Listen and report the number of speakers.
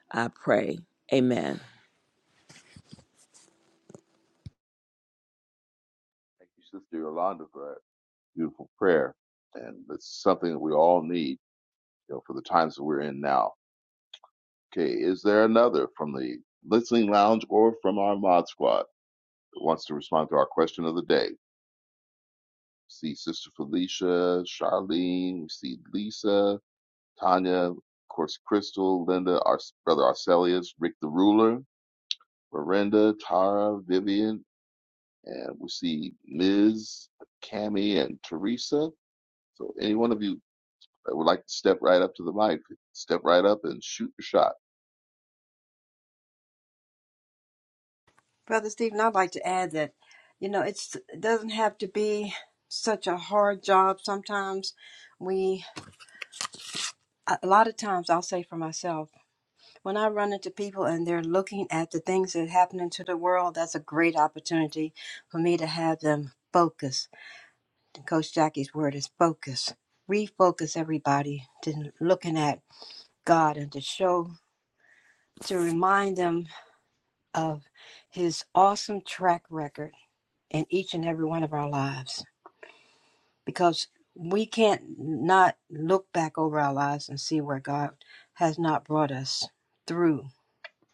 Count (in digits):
3